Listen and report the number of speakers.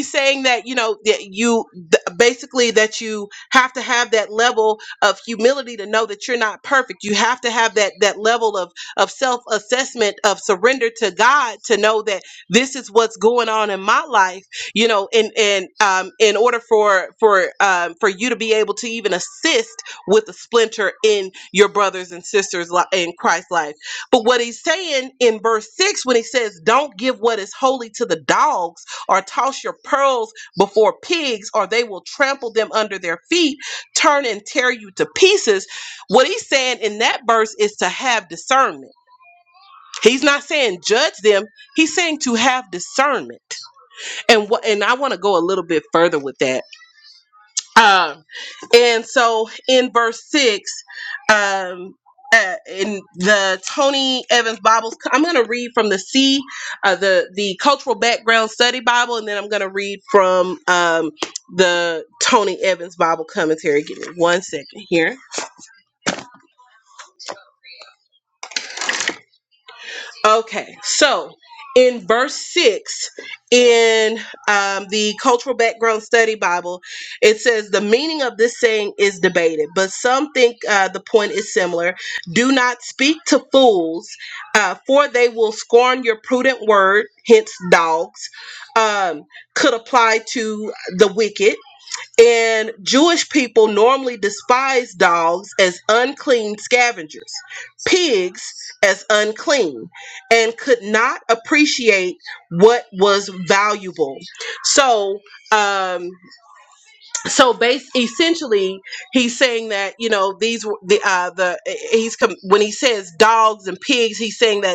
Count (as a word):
one